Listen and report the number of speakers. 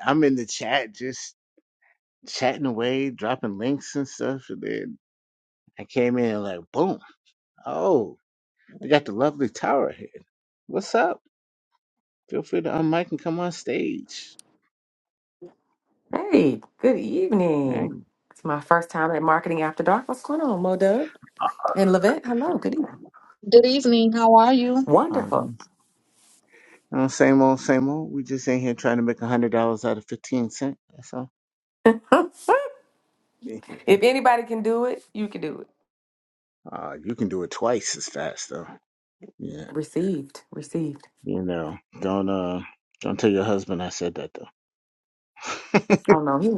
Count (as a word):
three